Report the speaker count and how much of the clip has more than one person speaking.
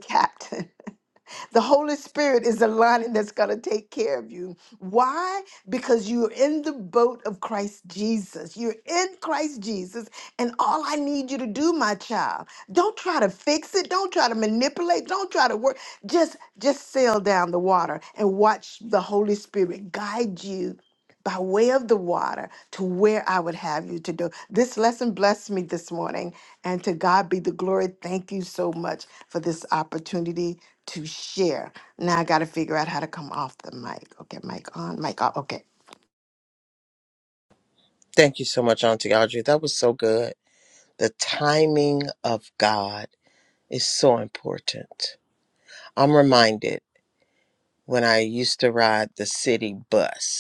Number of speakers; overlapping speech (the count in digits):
2, no overlap